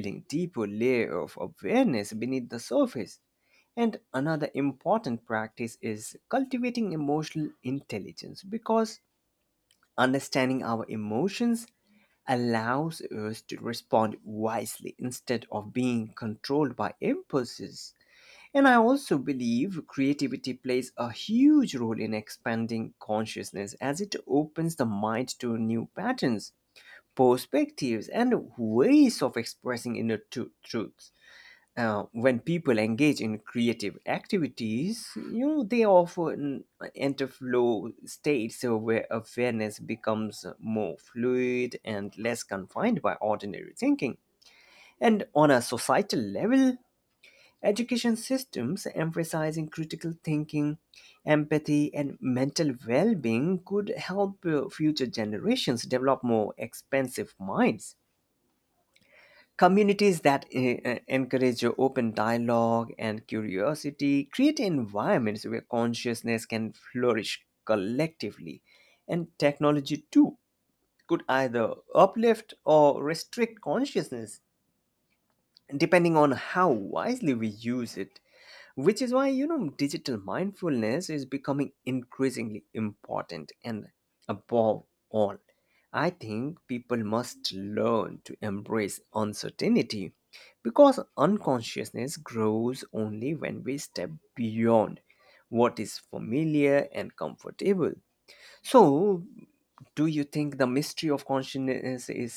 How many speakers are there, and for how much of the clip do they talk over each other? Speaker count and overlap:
one, no overlap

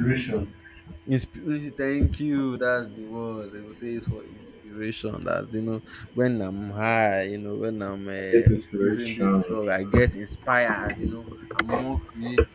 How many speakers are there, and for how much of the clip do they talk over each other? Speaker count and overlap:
two, about 10%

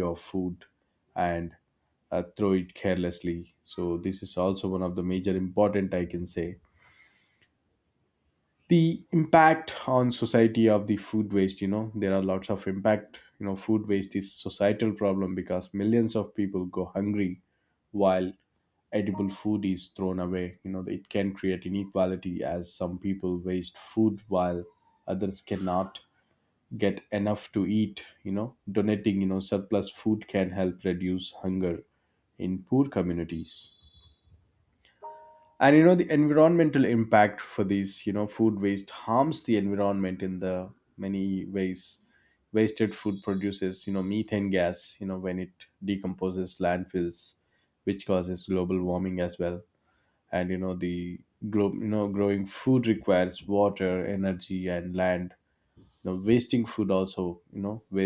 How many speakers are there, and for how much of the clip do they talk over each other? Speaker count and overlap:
one, no overlap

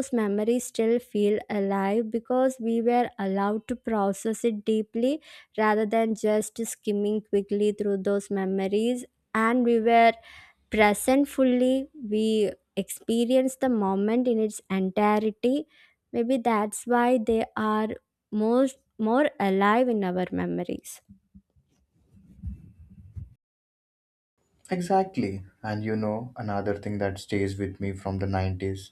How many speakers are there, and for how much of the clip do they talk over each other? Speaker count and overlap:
two, no overlap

